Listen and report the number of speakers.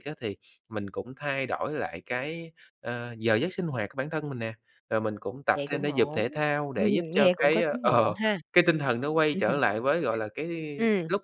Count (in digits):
2